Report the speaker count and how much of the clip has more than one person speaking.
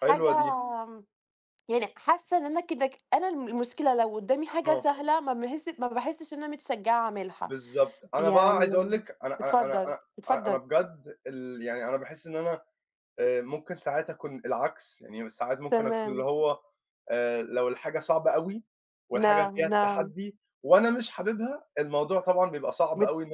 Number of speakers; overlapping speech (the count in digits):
2, about 18%